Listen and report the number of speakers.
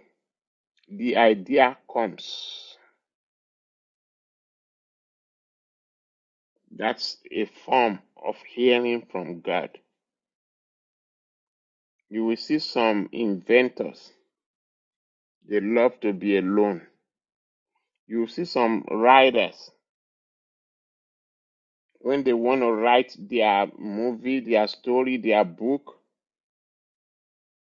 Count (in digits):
1